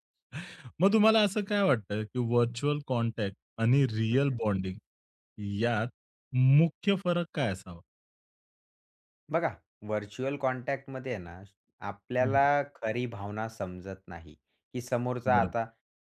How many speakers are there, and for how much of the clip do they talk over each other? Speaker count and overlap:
2, about 4%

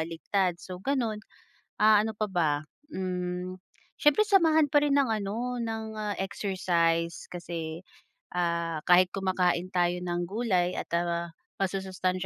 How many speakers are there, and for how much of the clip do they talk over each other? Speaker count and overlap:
1, no overlap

